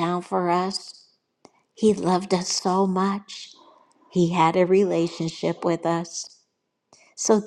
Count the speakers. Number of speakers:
1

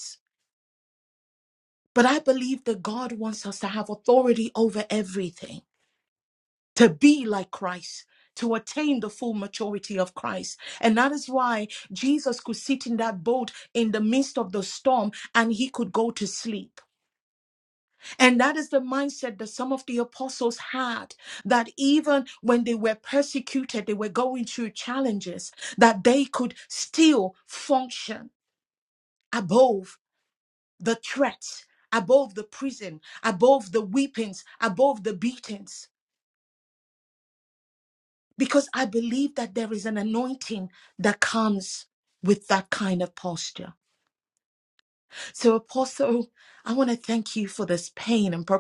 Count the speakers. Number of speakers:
1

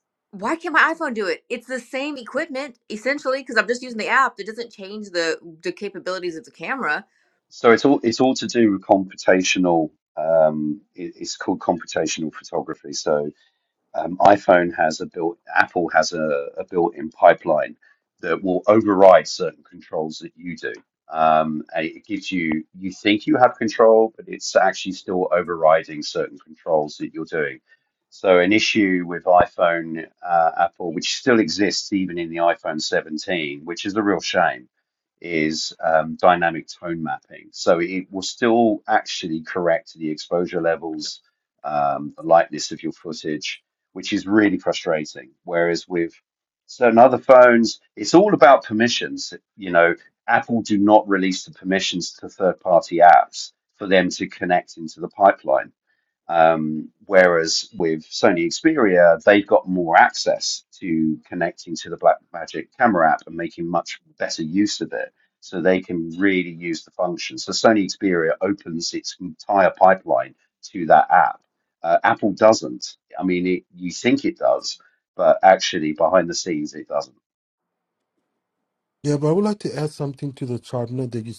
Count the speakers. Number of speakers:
3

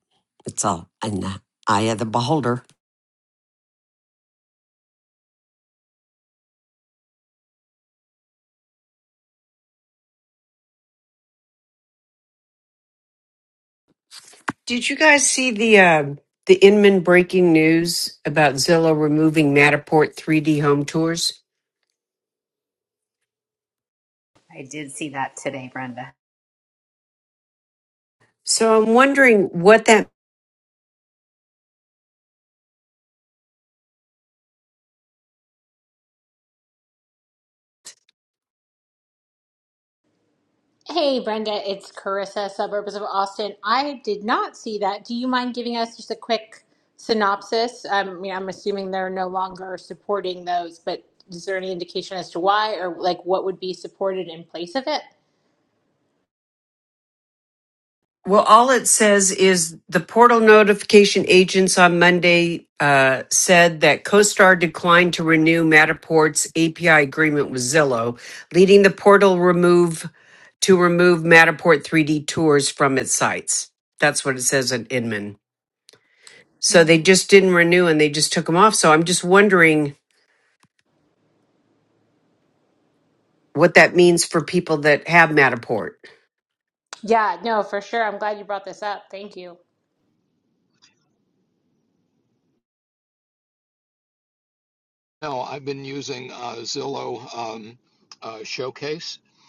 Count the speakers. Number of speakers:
5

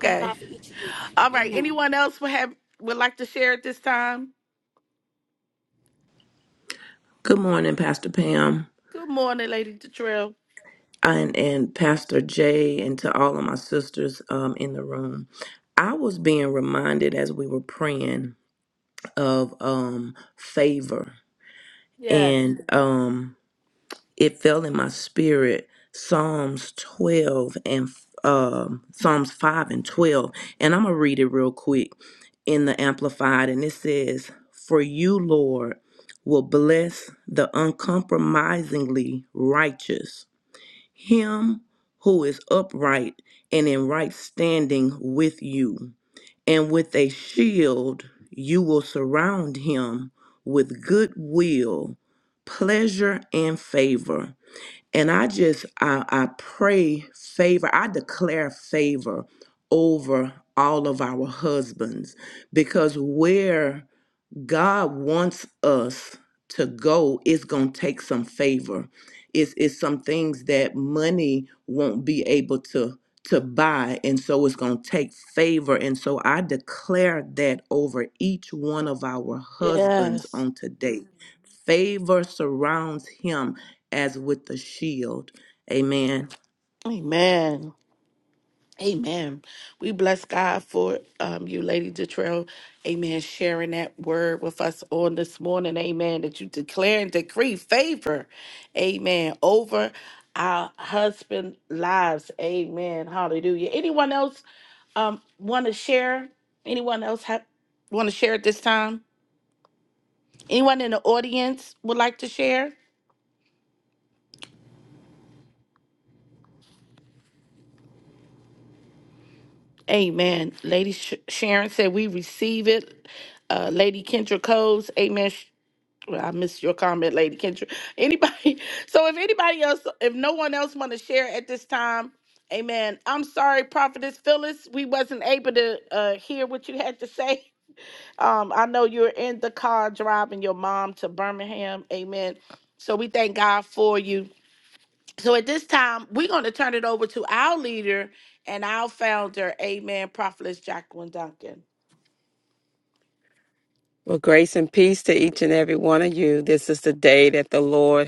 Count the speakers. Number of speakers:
4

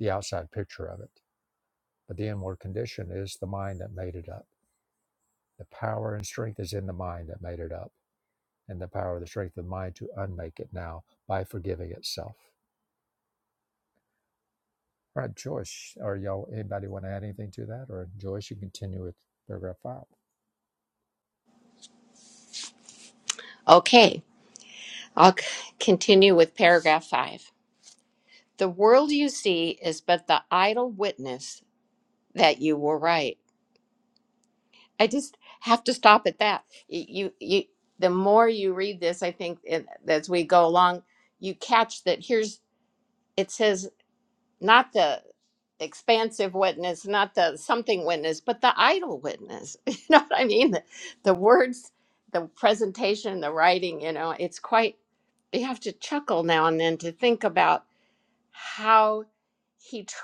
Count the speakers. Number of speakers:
2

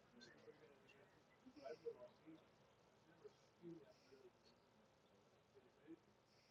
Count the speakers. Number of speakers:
0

